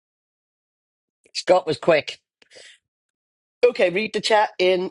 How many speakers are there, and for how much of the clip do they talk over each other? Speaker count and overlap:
one, no overlap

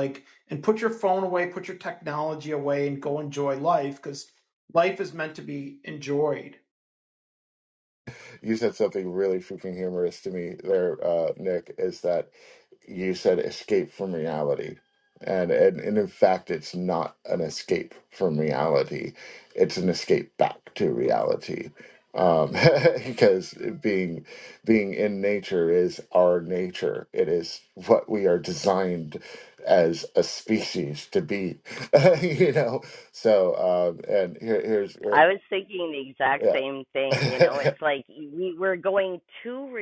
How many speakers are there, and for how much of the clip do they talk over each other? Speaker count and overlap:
three, about 1%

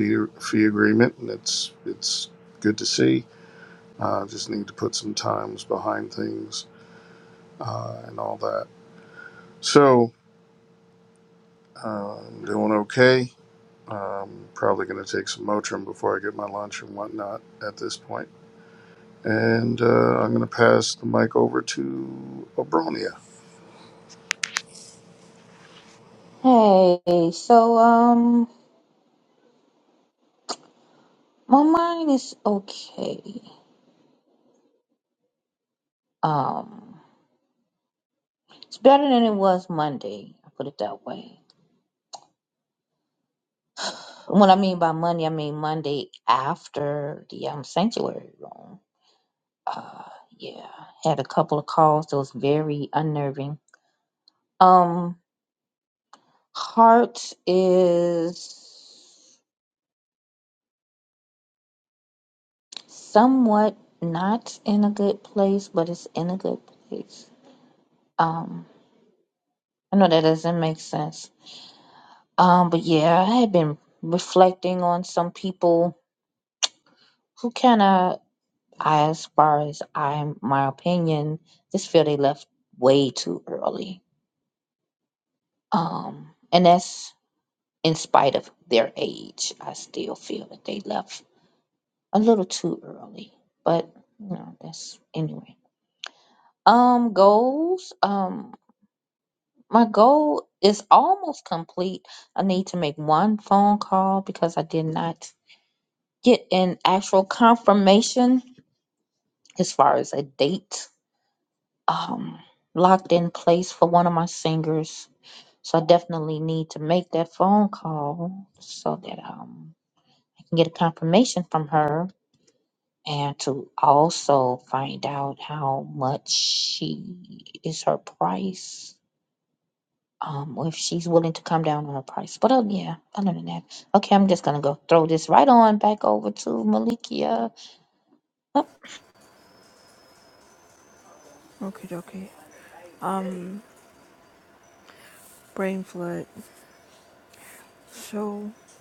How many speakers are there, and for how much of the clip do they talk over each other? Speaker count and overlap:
three, no overlap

